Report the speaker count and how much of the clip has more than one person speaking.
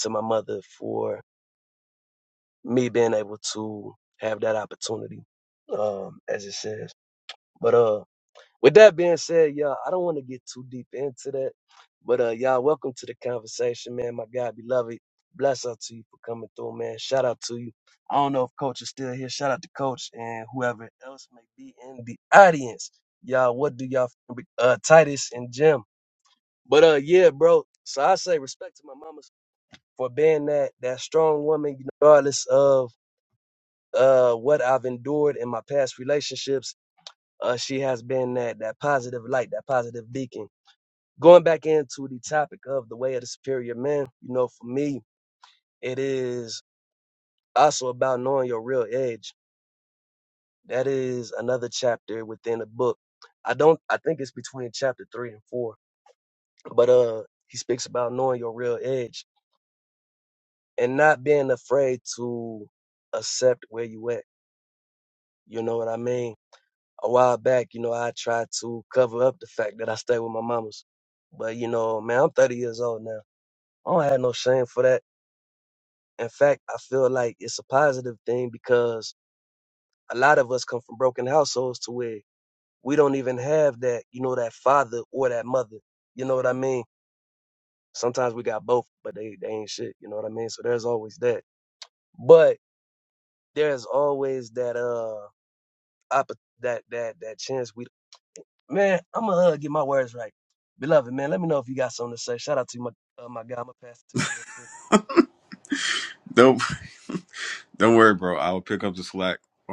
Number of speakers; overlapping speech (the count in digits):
2, no overlap